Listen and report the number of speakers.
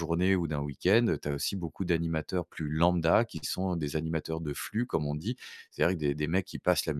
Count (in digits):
1